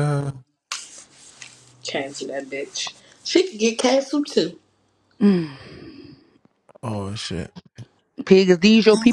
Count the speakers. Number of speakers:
3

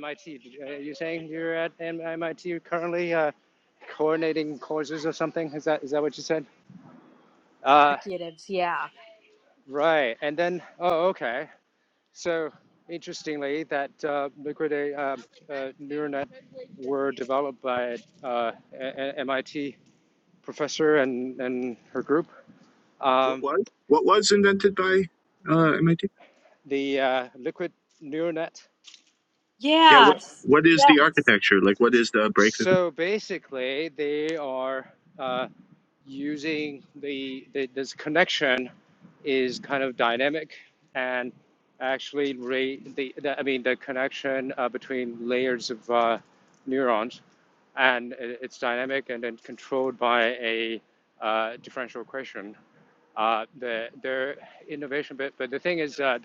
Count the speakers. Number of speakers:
3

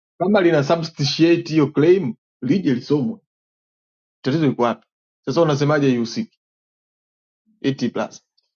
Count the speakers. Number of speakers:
1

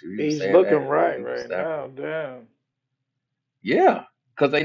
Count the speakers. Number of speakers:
2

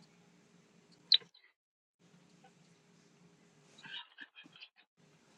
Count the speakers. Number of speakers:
0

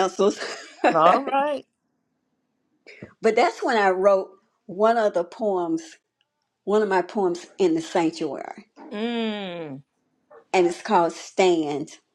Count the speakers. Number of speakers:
2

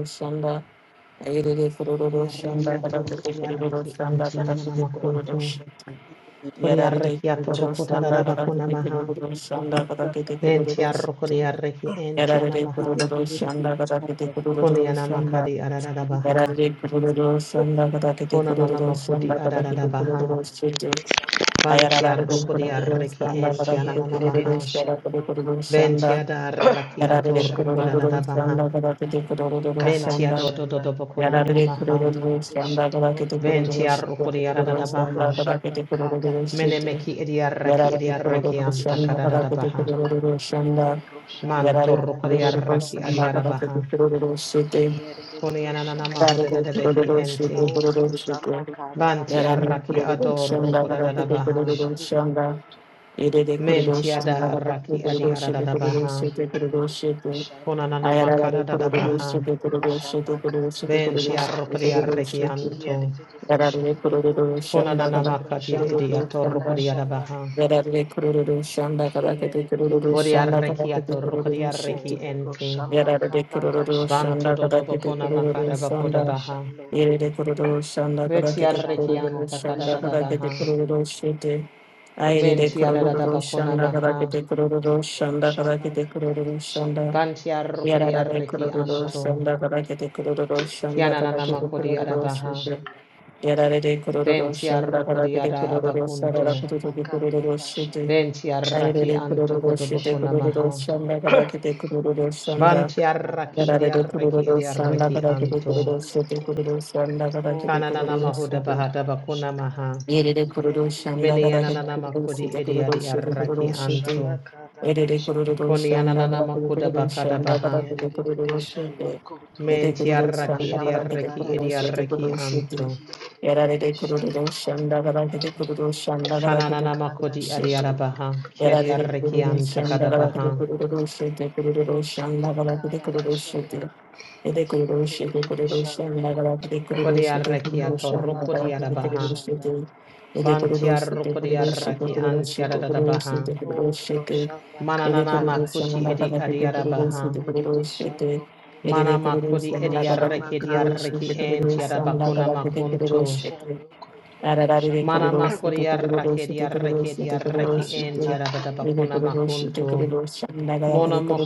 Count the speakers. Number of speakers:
3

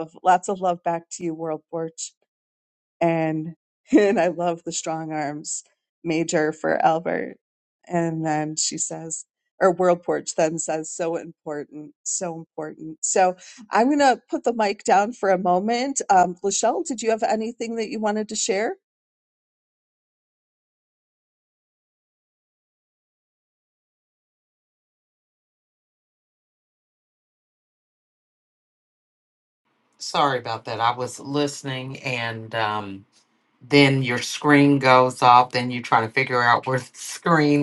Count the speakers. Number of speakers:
2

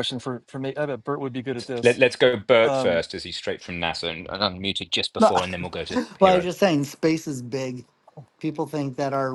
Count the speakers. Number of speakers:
3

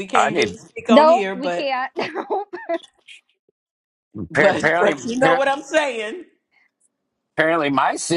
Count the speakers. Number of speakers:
3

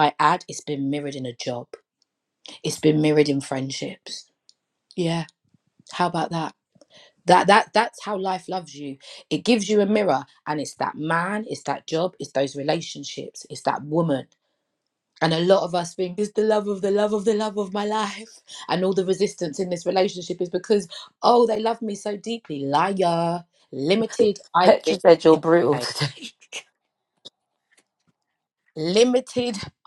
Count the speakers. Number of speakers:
2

